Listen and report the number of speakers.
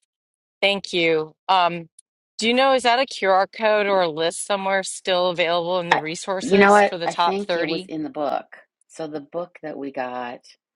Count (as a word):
two